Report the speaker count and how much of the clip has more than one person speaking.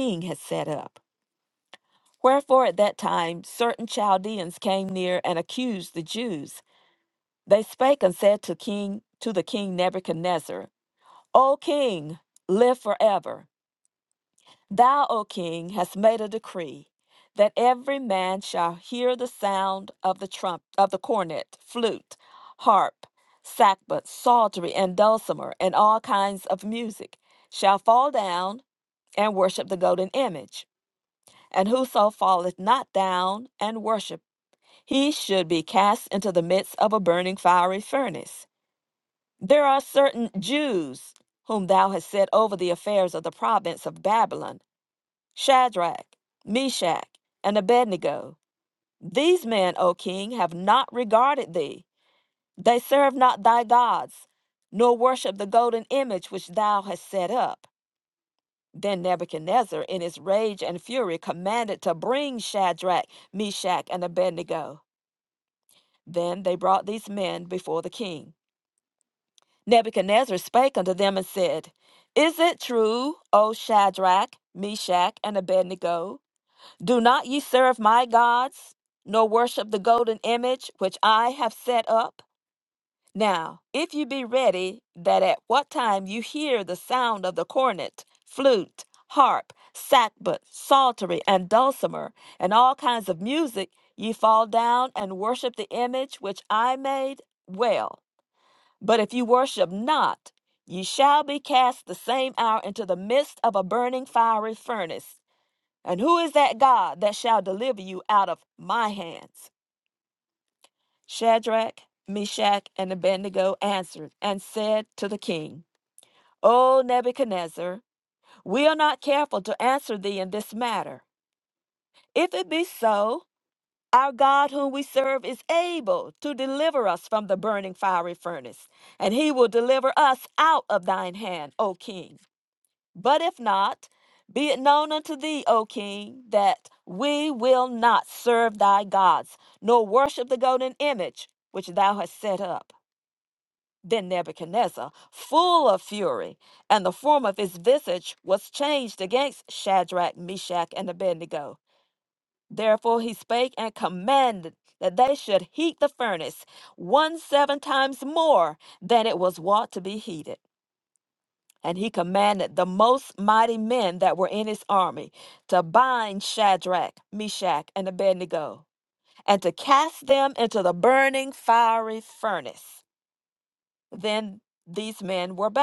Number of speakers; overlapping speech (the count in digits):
1, no overlap